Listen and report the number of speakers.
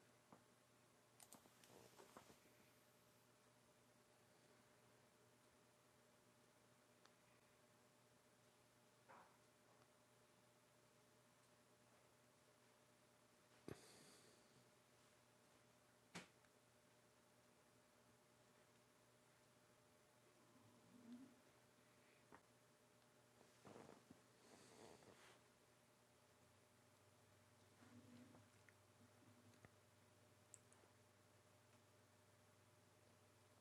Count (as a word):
zero